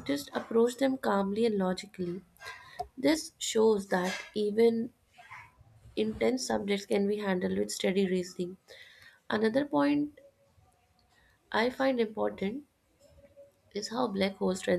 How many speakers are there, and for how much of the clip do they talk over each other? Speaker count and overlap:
one, no overlap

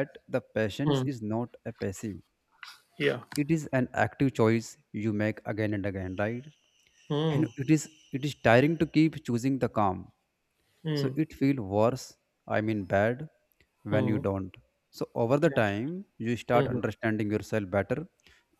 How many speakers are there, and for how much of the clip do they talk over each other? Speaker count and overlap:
two, about 6%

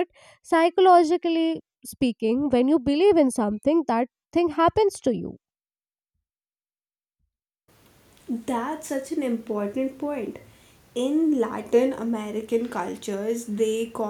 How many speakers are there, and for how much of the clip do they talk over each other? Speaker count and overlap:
two, no overlap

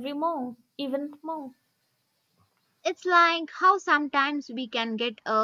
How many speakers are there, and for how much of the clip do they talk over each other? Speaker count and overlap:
two, no overlap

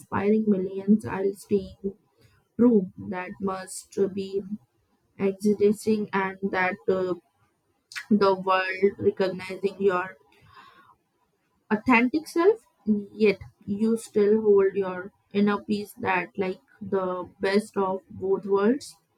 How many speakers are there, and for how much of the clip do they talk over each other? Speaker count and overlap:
one, no overlap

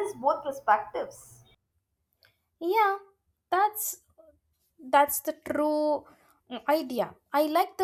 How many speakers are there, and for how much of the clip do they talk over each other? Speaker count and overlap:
two, no overlap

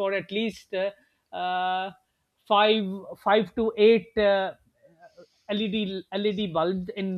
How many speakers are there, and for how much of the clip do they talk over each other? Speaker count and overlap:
one, no overlap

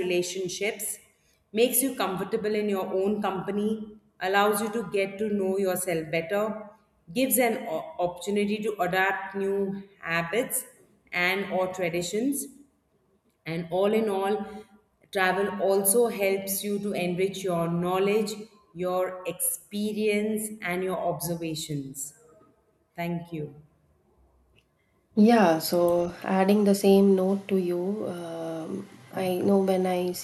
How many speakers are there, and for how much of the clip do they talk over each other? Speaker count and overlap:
two, no overlap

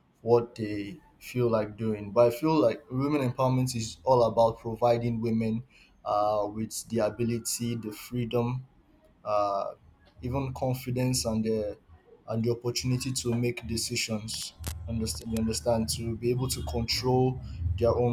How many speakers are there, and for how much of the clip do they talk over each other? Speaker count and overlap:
one, no overlap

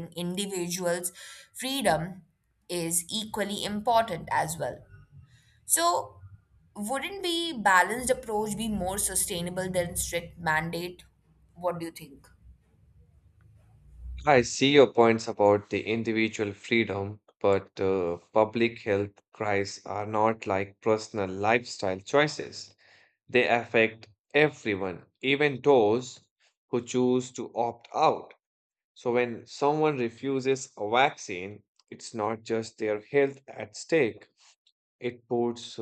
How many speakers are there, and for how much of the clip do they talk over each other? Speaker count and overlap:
two, no overlap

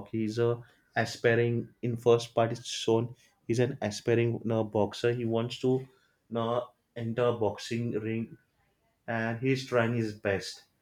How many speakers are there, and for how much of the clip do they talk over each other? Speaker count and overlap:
one, no overlap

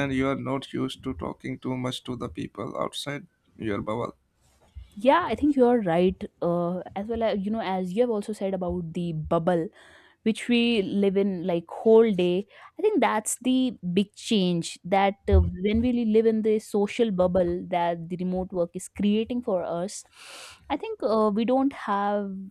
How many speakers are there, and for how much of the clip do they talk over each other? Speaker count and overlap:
two, no overlap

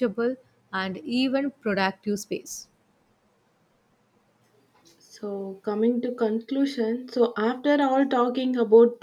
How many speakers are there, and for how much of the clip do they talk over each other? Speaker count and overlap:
two, no overlap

